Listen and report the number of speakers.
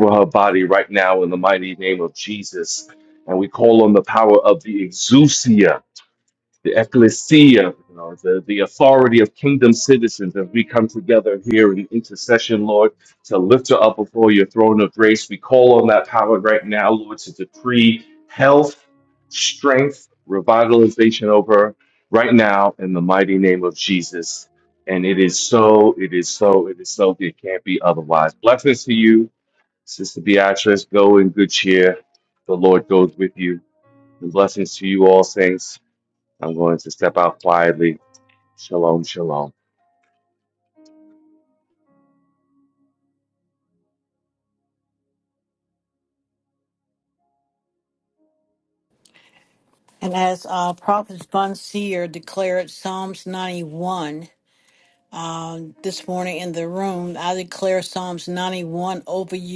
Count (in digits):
2